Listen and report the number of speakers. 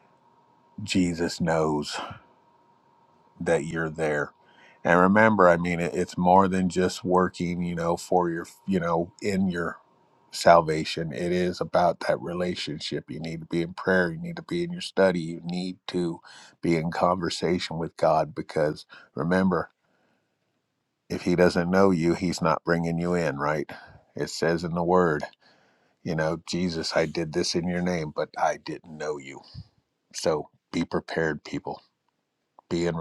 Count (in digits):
1